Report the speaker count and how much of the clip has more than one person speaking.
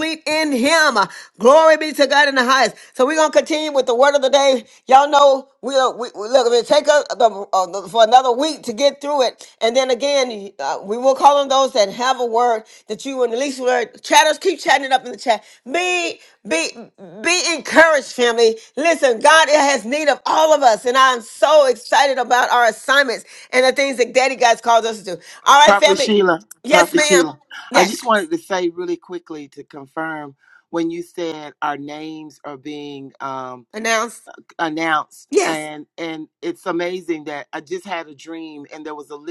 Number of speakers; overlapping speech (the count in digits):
2, about 3%